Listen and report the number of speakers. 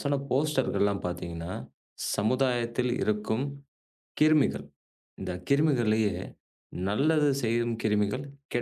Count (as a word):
one